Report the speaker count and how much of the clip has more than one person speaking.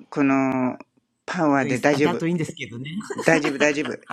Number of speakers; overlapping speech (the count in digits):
2, about 7%